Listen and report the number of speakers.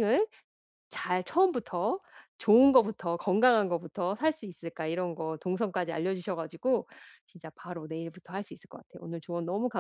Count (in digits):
1